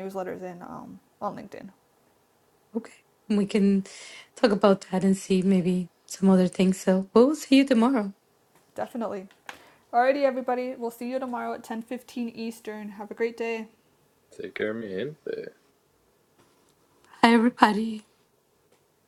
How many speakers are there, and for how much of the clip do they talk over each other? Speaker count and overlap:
3, no overlap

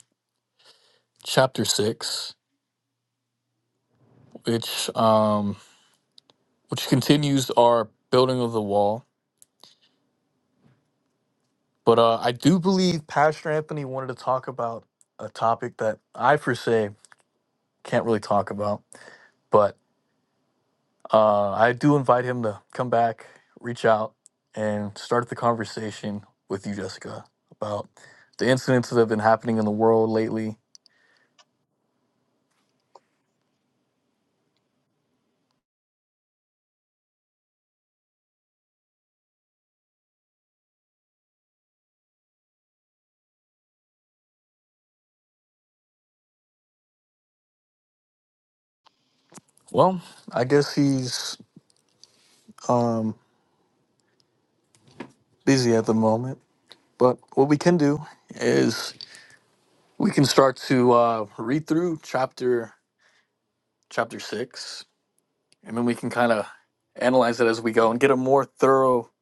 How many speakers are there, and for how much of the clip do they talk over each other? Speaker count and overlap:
1, no overlap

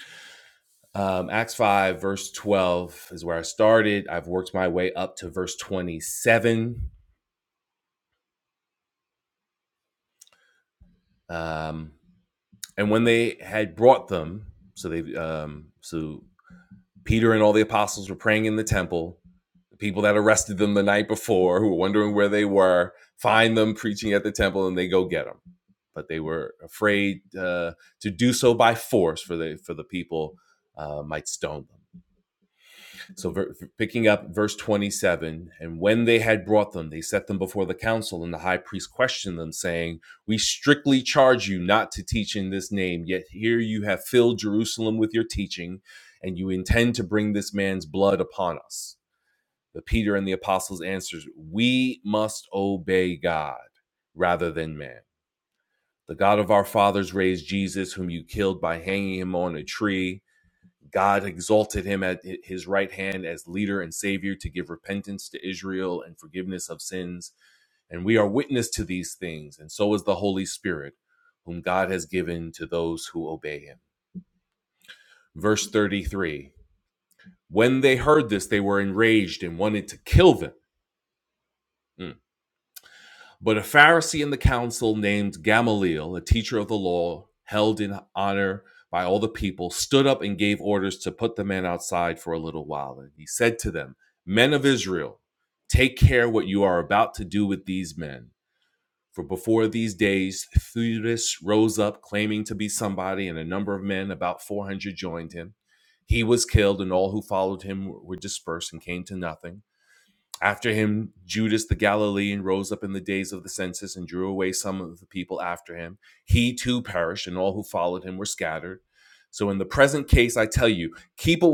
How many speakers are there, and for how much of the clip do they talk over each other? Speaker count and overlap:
1, no overlap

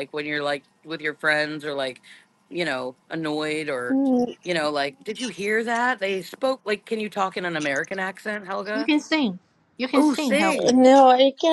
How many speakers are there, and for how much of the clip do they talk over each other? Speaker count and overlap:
3, about 9%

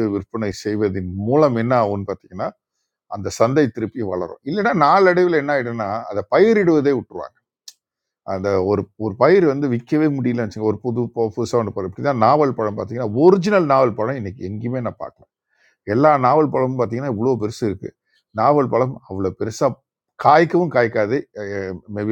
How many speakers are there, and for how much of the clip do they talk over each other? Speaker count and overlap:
1, no overlap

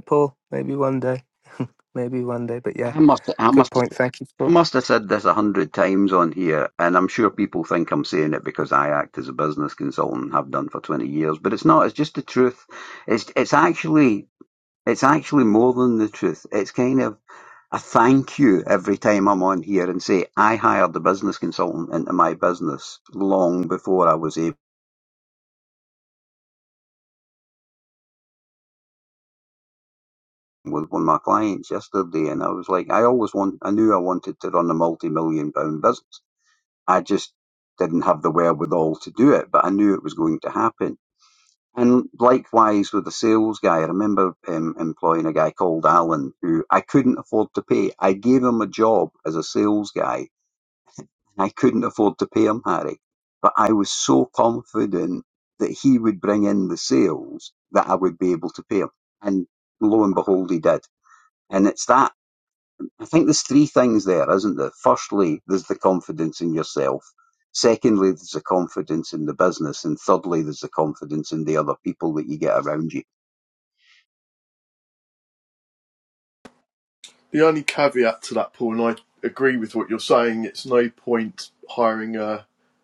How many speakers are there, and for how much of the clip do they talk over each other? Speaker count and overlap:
3, about 1%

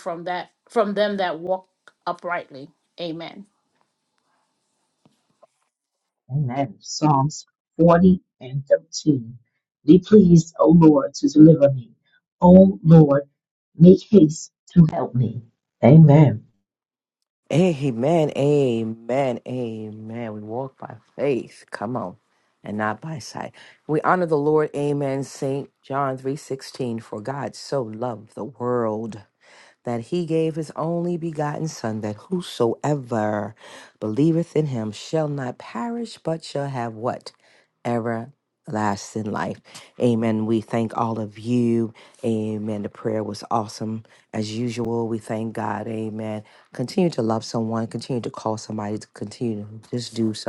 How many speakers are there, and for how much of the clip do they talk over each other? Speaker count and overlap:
3, no overlap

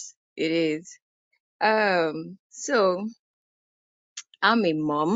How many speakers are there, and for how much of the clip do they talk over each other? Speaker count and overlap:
1, no overlap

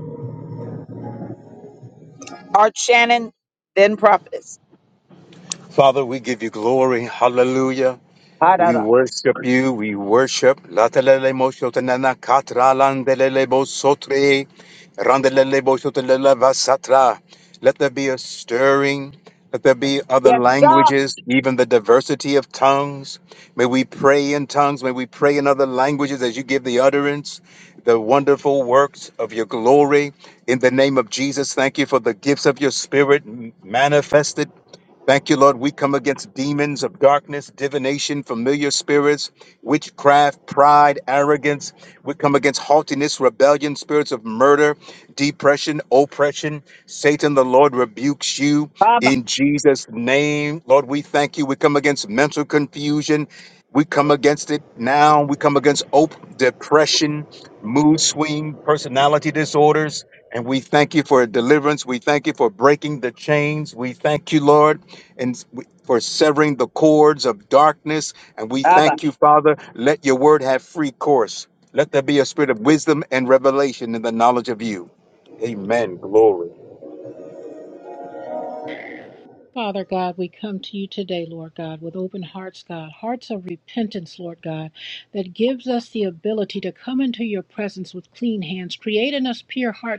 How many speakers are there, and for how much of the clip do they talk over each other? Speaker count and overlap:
3, no overlap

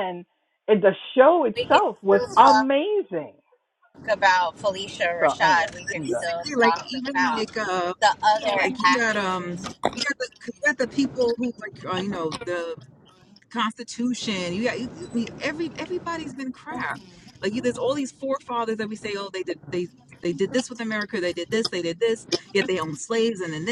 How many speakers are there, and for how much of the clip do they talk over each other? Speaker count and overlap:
3, about 18%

